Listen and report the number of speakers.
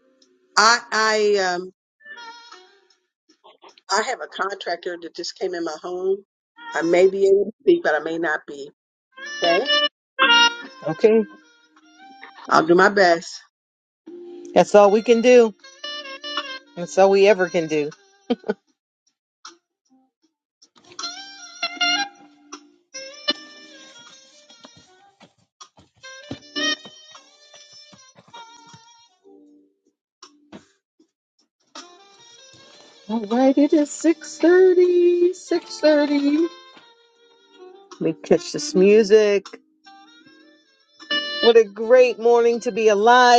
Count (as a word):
two